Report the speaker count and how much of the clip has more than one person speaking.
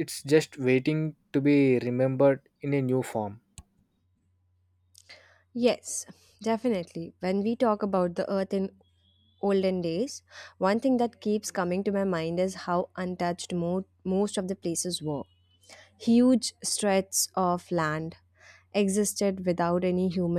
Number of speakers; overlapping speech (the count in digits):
2, no overlap